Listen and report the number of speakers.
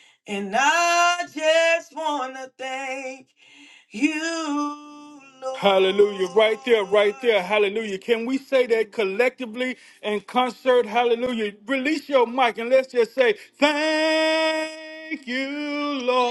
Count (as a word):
two